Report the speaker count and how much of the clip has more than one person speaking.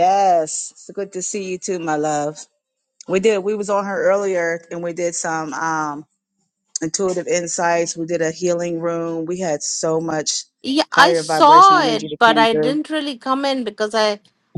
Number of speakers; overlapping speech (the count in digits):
2, about 12%